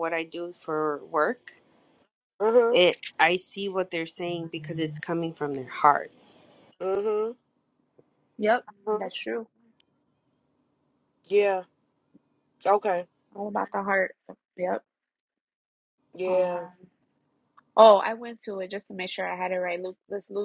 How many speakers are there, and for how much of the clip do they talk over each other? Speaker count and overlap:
3, about 3%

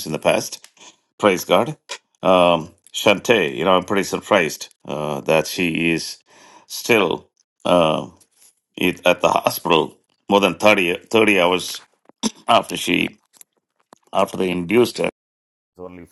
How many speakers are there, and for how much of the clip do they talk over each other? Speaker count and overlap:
1, no overlap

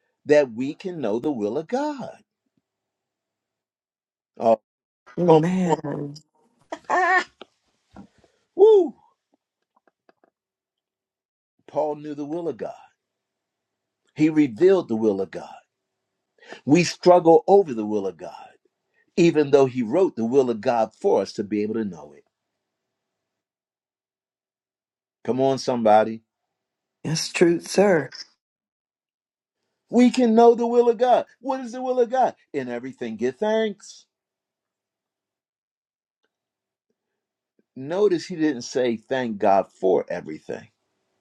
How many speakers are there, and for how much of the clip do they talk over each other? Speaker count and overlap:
2, under 1%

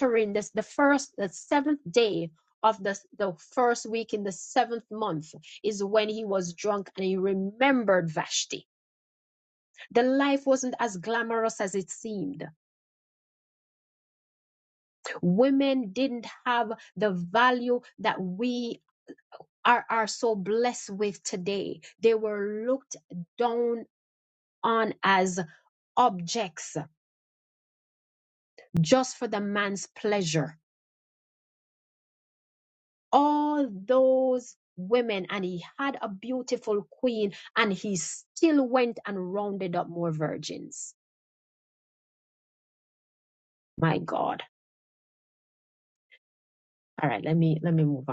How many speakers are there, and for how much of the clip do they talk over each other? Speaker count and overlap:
1, no overlap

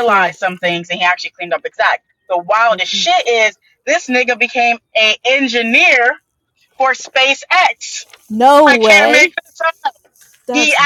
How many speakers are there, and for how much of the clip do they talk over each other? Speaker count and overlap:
2, about 16%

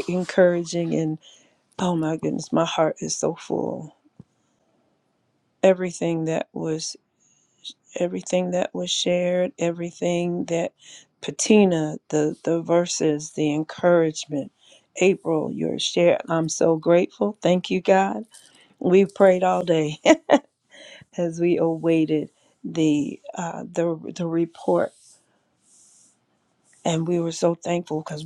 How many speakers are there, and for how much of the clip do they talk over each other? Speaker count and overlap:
1, no overlap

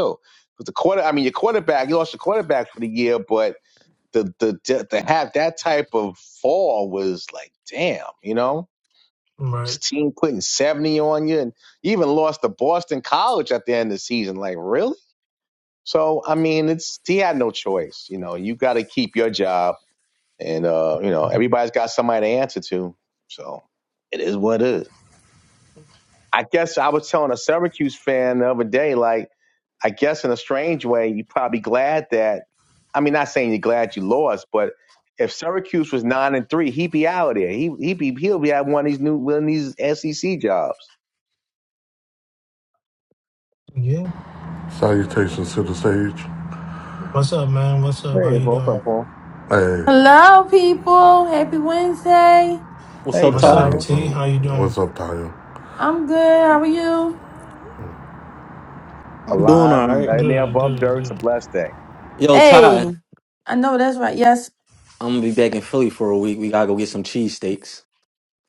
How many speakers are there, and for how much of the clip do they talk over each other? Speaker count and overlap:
5, about 6%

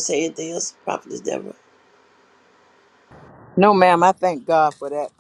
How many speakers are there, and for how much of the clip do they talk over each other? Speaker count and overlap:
2, no overlap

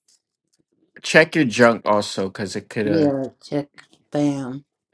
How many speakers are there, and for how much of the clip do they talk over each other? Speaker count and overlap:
2, about 5%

